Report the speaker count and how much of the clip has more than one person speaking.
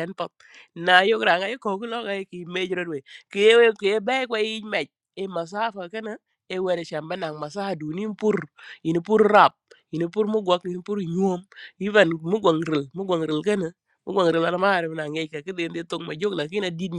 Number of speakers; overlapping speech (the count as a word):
one, no overlap